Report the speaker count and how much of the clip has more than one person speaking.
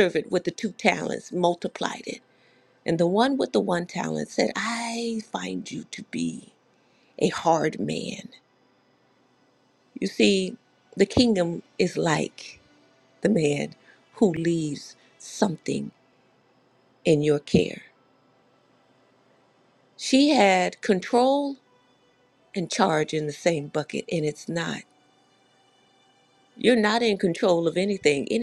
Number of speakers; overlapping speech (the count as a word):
one, no overlap